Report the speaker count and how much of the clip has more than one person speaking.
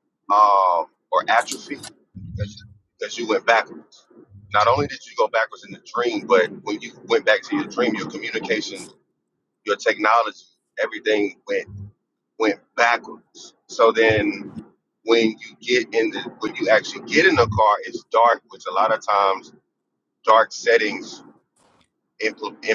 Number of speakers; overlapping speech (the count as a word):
one, no overlap